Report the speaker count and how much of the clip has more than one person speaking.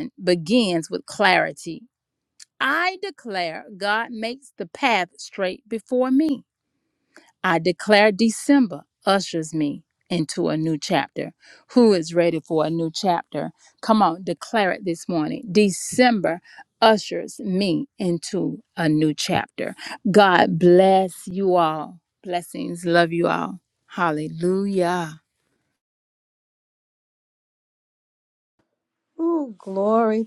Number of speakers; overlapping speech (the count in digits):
2, no overlap